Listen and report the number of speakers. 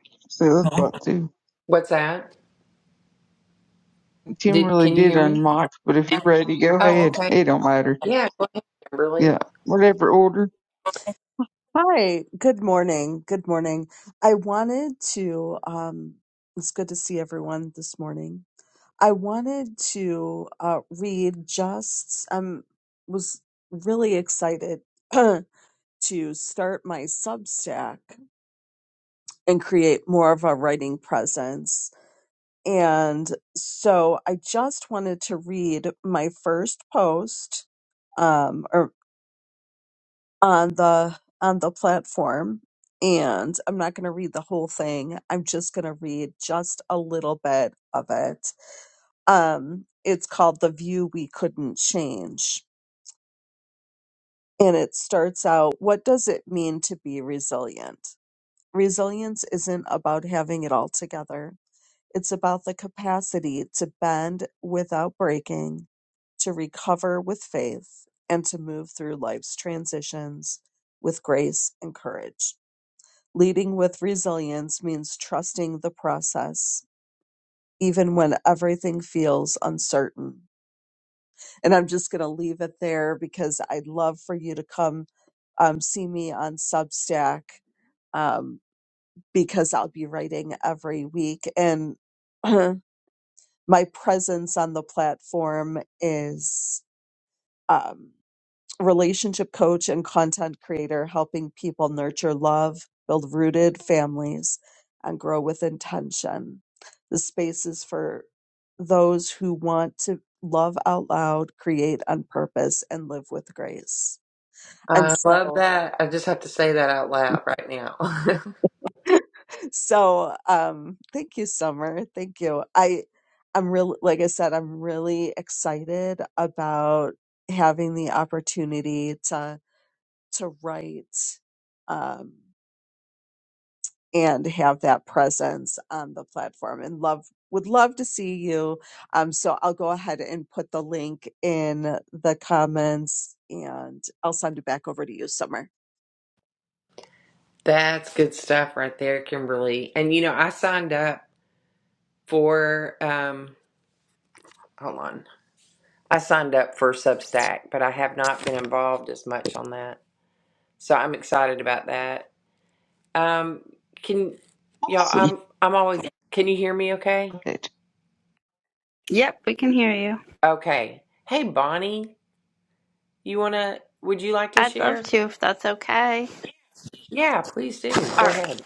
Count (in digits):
4